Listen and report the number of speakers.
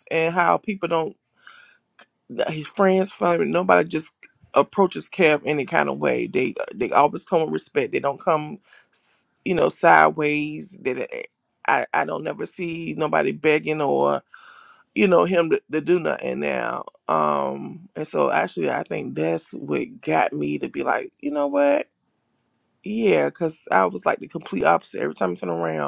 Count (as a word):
one